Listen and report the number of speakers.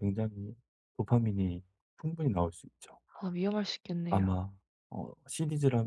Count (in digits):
2